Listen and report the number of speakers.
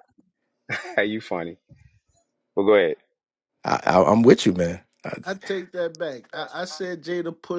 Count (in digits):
3